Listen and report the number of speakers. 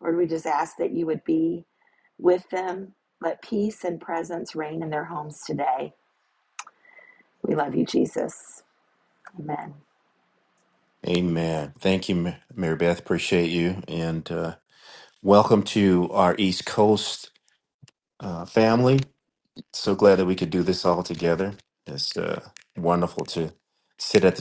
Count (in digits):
2